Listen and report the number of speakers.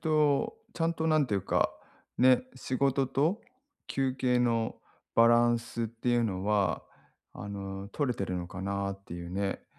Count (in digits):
1